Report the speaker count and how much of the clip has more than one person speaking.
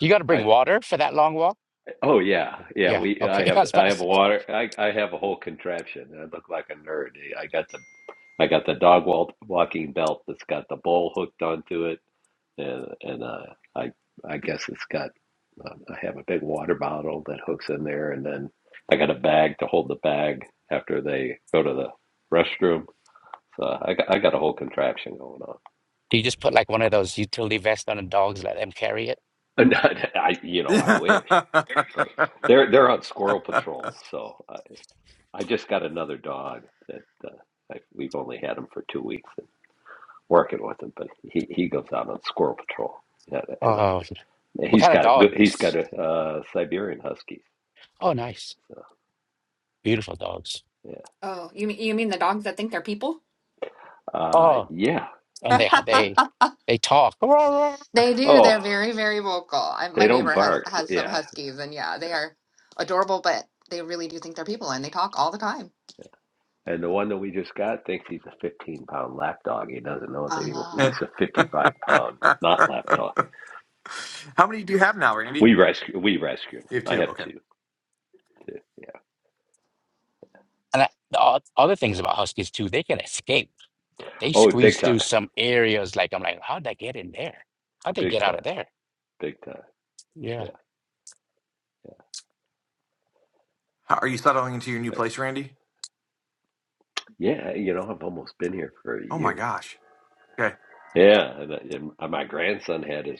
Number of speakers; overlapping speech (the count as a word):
four, about 8%